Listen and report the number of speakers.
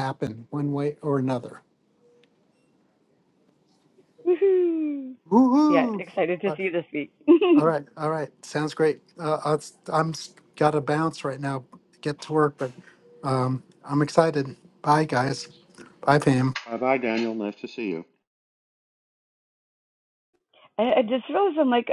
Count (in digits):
3